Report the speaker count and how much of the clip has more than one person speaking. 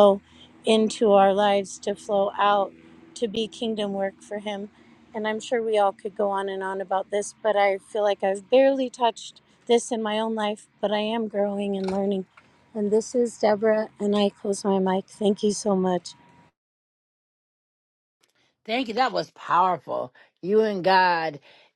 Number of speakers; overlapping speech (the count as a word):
two, no overlap